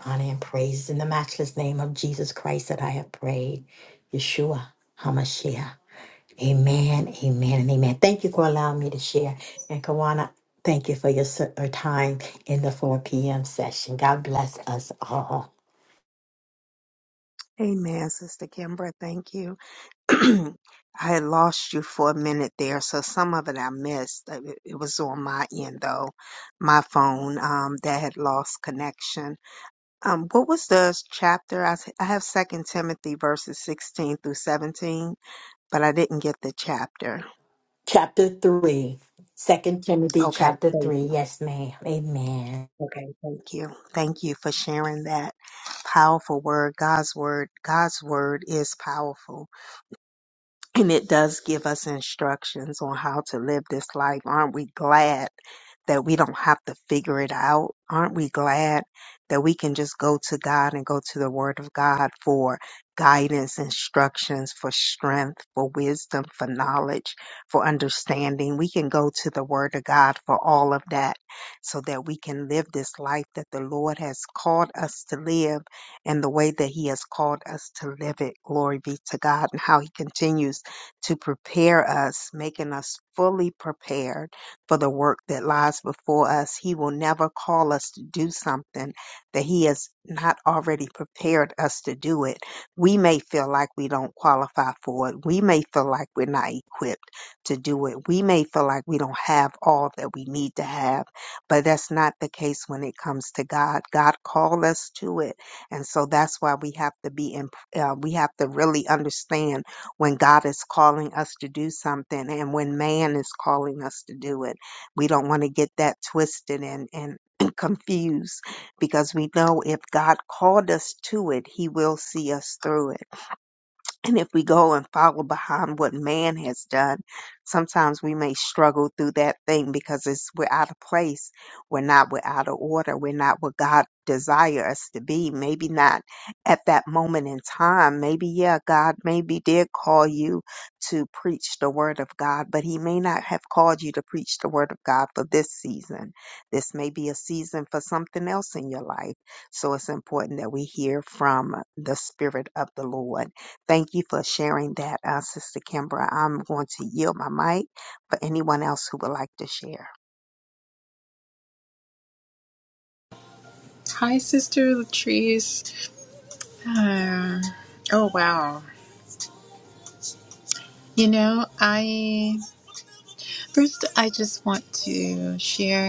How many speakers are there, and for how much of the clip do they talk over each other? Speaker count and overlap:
3, about 1%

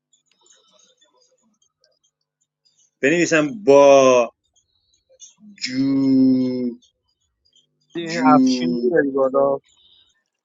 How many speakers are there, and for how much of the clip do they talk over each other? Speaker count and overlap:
2, about 5%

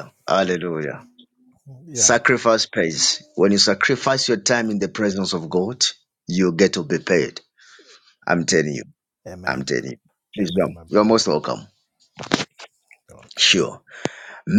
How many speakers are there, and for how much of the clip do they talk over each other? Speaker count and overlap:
2, about 9%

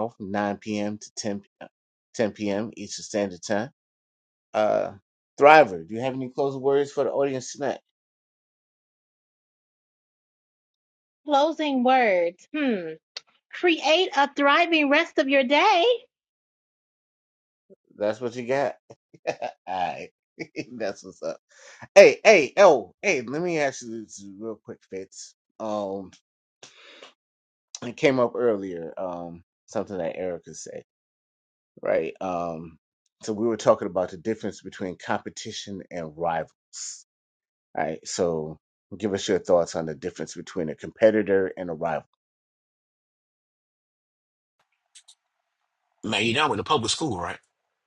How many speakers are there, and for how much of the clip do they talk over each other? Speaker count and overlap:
3, no overlap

